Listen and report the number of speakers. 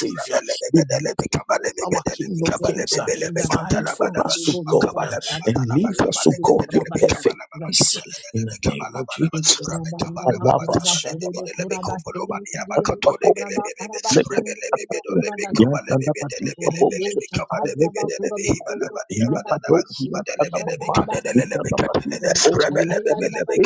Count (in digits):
3